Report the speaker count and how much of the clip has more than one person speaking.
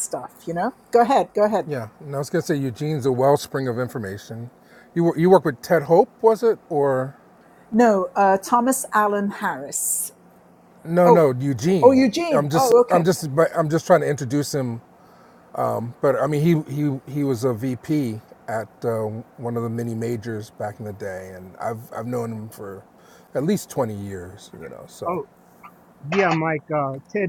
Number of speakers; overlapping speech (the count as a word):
three, about 5%